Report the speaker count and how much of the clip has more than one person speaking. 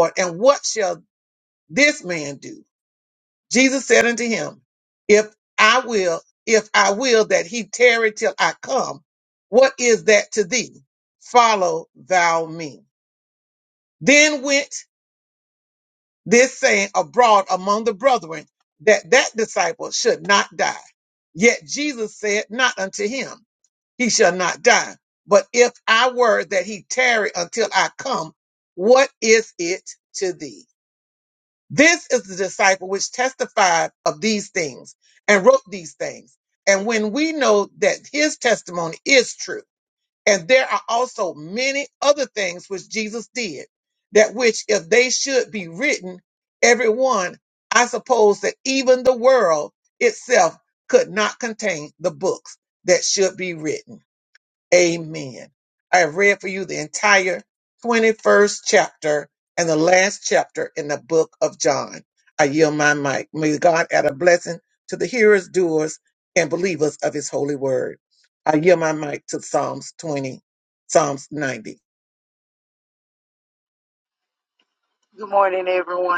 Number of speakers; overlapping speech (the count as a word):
two, no overlap